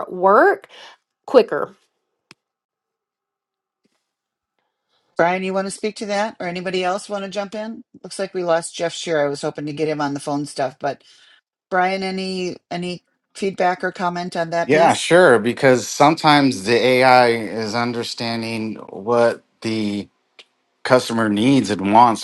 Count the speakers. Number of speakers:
3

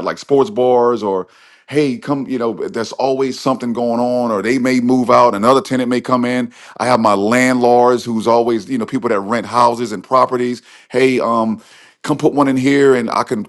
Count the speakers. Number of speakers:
1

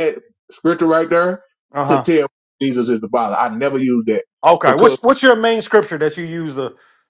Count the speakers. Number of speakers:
2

